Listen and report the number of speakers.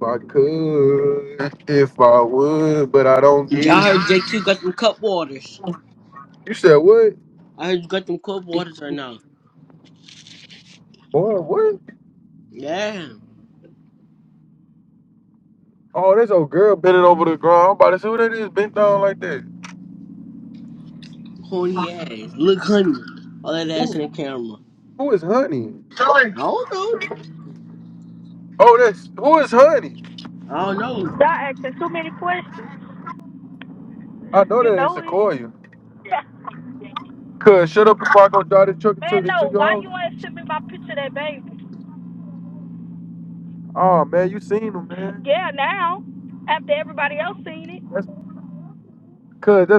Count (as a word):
three